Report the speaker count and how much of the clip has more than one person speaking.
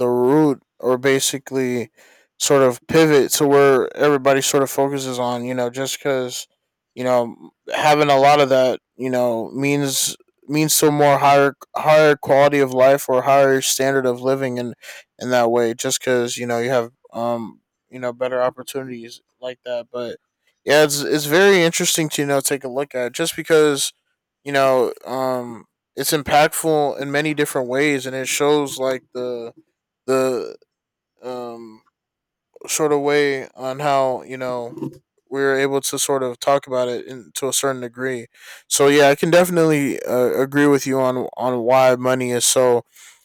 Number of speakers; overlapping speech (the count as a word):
one, no overlap